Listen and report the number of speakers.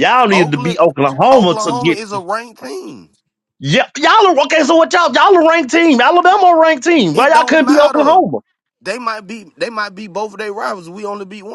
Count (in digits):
2